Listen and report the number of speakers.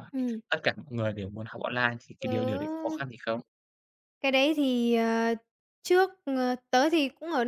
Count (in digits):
2